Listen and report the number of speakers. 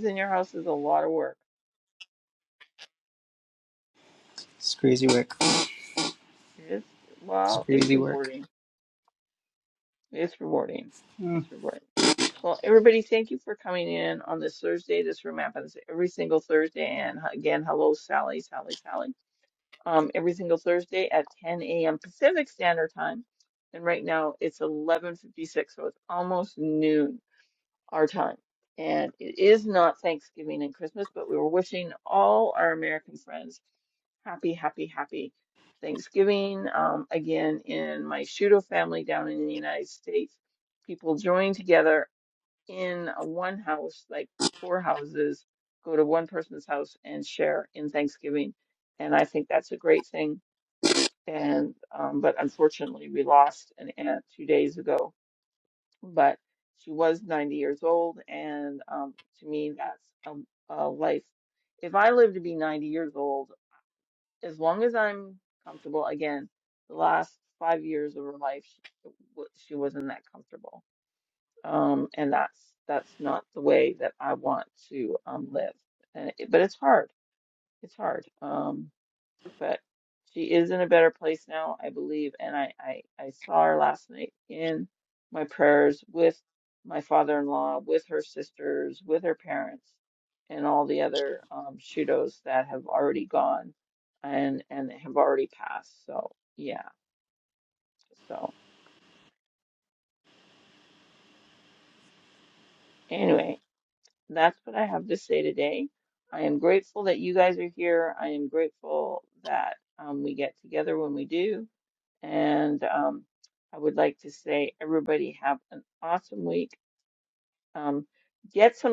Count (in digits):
2